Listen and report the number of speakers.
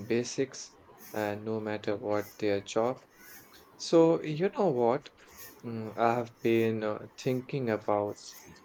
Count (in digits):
1